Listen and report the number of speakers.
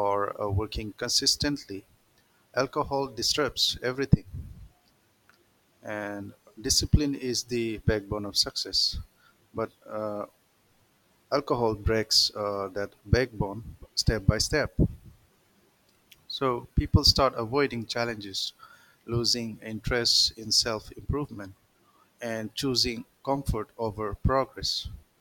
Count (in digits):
1